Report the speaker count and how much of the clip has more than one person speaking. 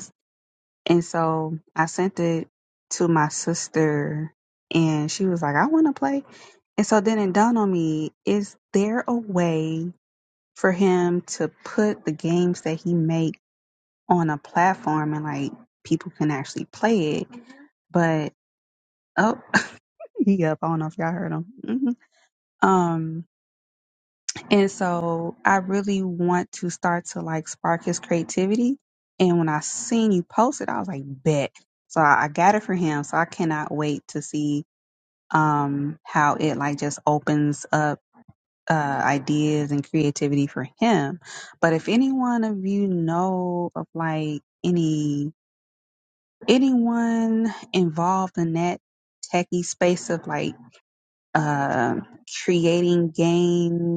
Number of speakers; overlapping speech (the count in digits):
1, no overlap